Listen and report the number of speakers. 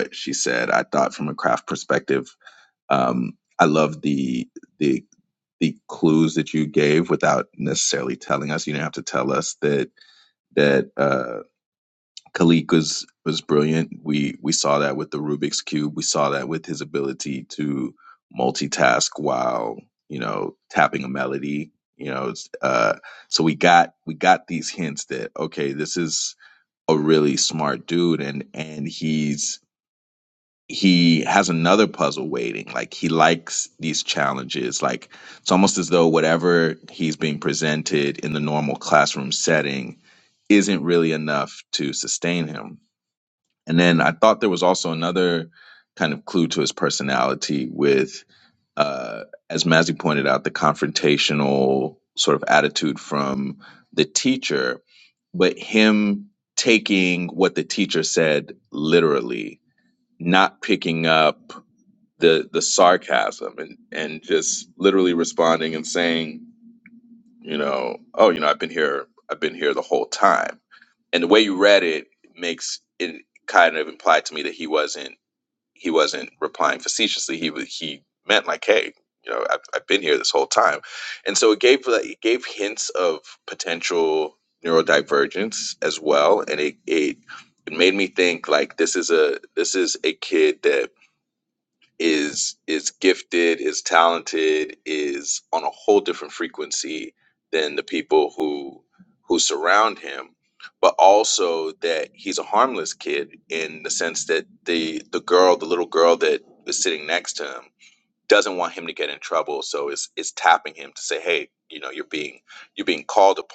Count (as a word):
one